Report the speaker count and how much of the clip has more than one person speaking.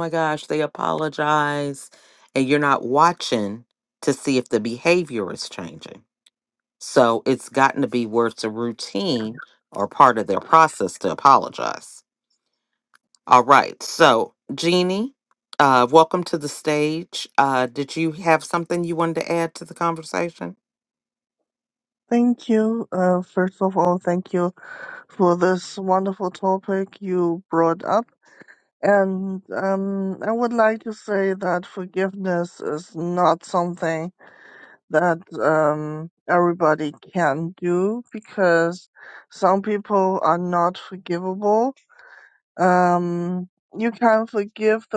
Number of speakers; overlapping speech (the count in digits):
2, no overlap